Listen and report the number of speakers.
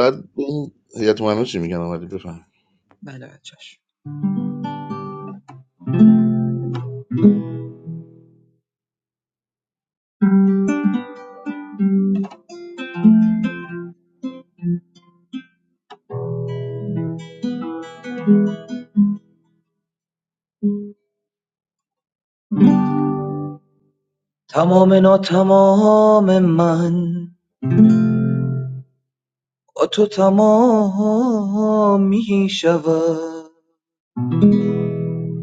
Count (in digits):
2